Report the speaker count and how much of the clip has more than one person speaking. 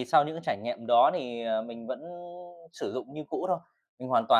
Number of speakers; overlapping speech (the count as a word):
one, no overlap